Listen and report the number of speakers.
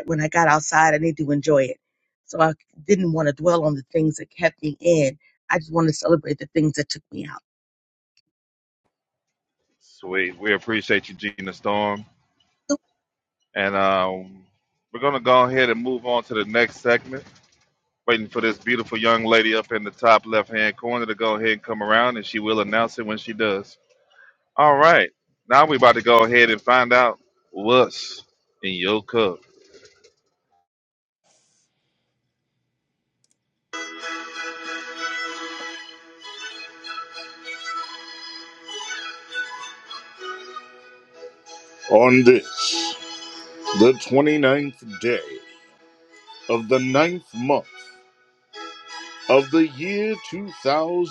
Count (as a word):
three